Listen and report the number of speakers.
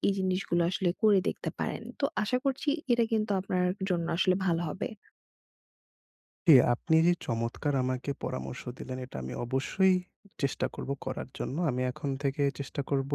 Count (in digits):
2